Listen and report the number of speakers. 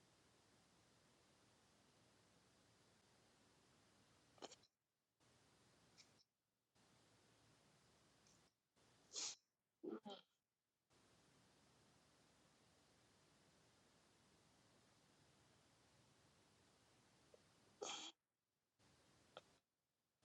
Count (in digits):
0